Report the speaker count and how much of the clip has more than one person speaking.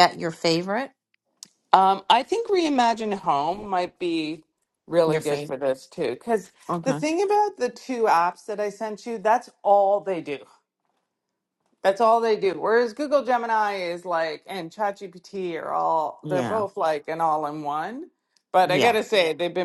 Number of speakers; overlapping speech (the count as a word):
two, about 7%